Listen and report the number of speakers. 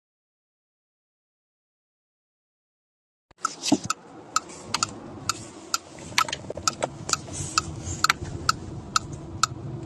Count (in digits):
0